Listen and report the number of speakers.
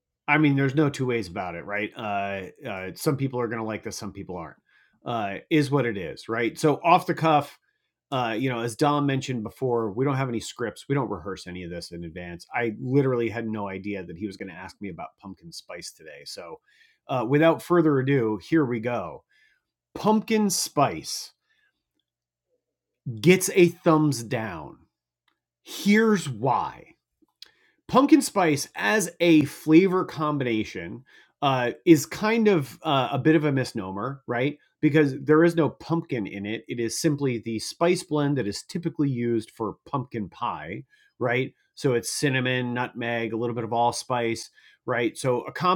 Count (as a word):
one